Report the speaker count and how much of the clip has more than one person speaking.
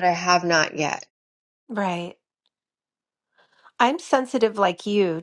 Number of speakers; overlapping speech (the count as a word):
two, no overlap